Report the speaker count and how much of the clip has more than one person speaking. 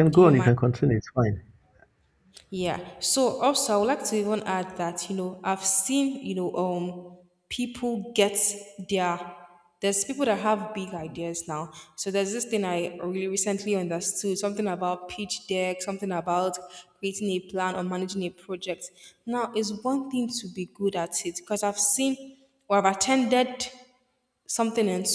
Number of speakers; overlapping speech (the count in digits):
2, about 2%